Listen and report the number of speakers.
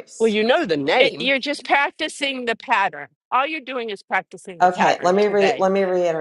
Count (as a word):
three